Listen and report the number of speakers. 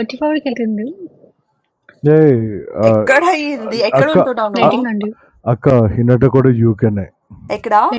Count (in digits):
3